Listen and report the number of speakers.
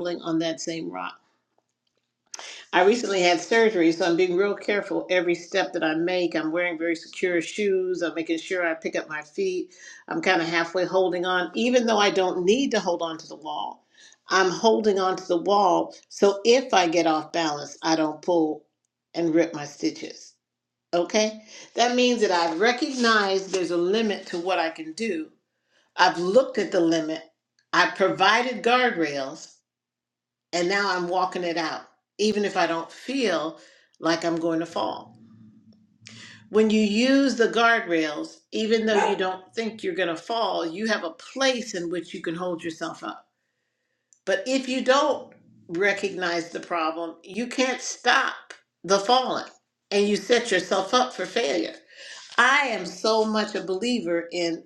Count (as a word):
one